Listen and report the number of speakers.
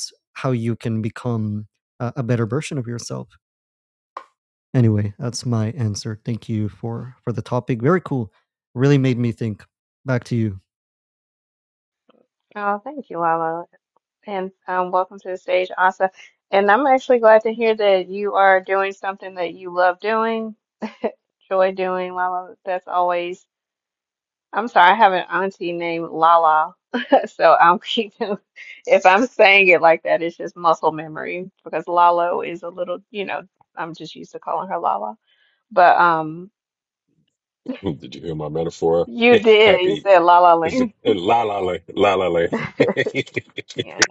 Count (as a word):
three